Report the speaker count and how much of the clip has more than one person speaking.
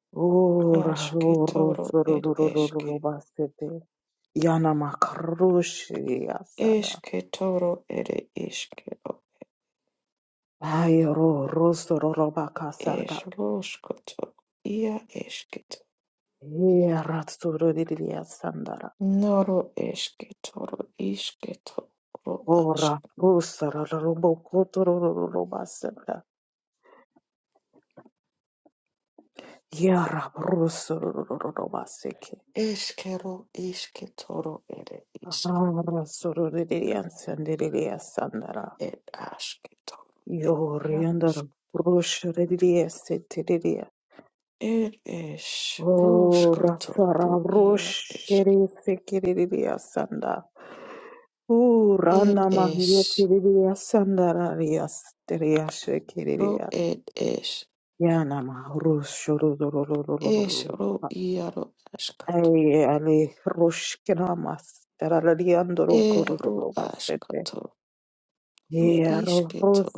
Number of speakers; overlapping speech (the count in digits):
2, about 16%